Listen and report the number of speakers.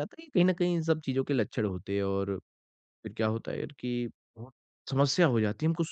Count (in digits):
1